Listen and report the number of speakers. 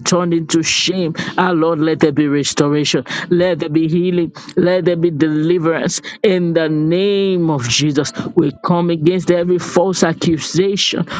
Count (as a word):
one